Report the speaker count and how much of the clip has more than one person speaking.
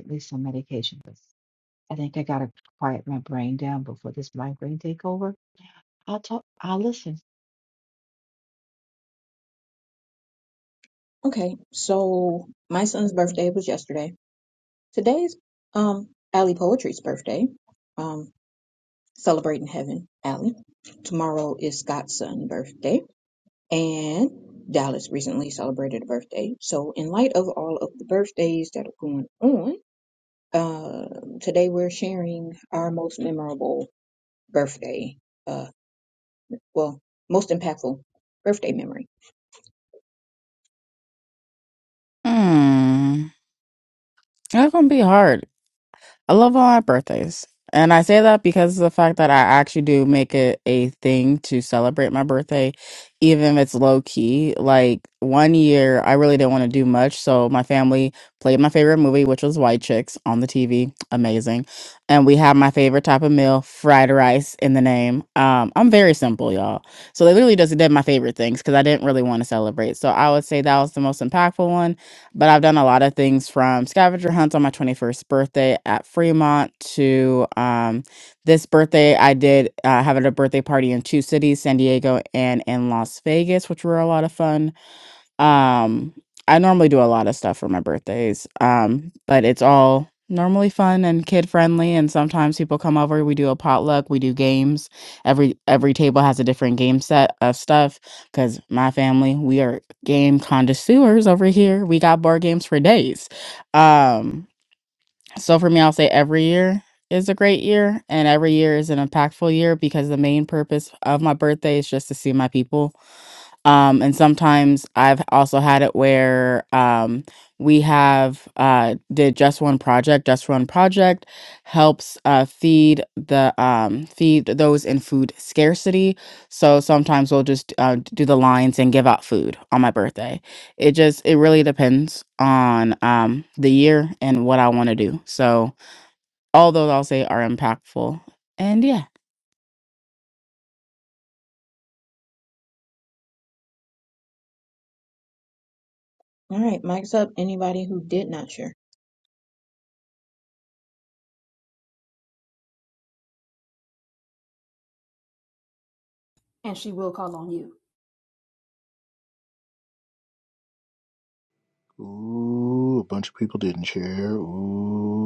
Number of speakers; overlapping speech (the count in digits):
5, no overlap